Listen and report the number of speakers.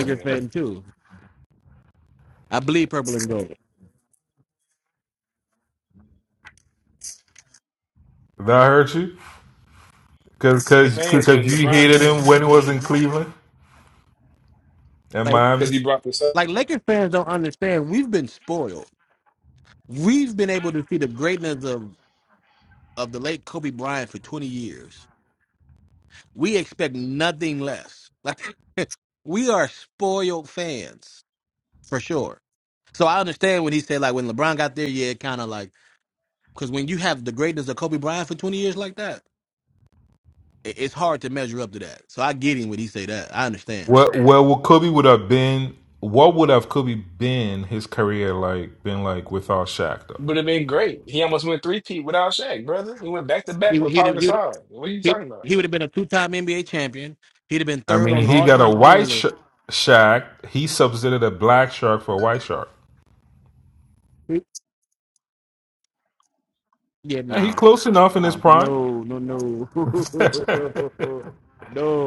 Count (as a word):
three